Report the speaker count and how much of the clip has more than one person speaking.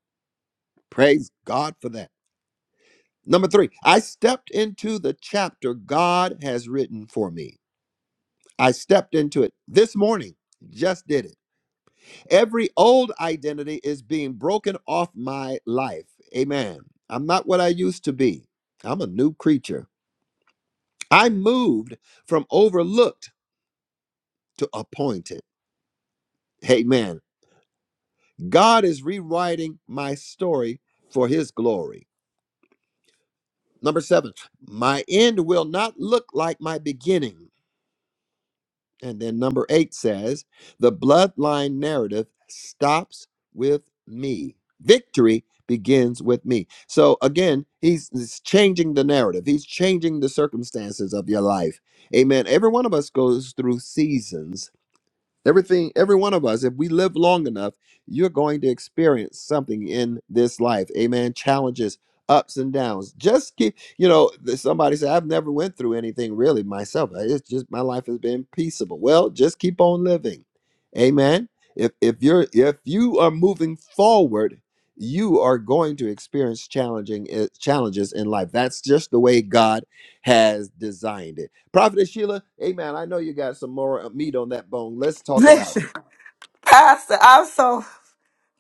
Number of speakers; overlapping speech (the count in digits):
2, under 1%